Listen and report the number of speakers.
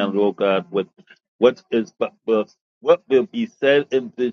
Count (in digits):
1